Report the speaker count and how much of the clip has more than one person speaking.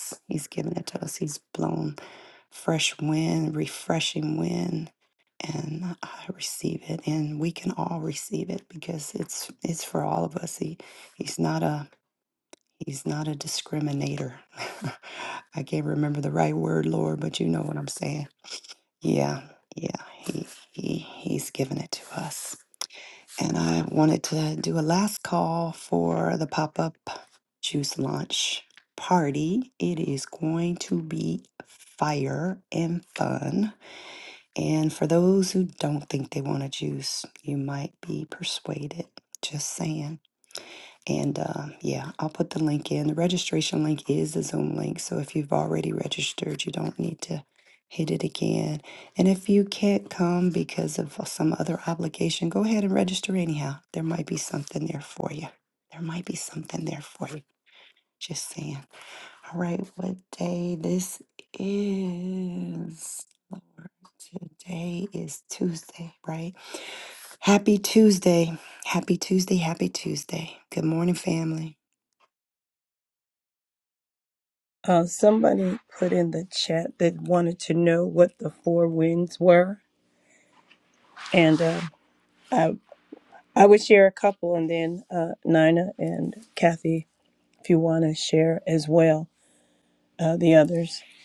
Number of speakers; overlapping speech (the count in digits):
2, no overlap